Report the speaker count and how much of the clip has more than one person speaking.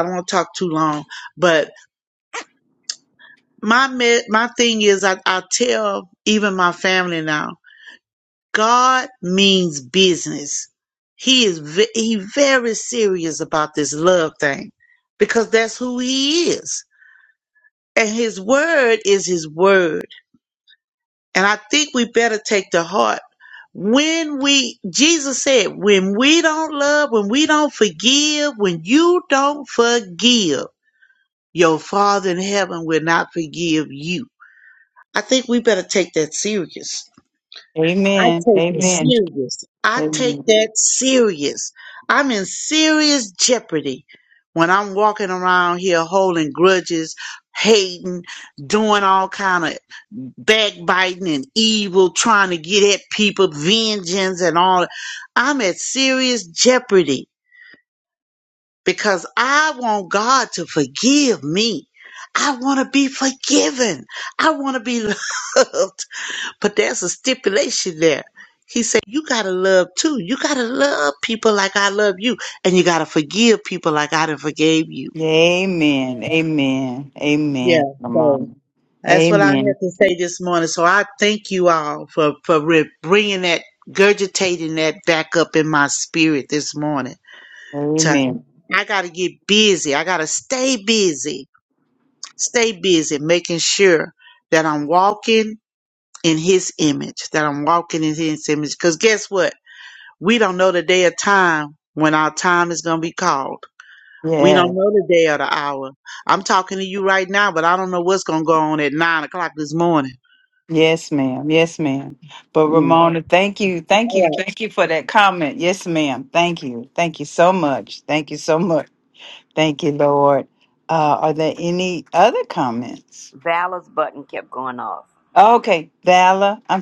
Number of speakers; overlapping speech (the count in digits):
3, about 3%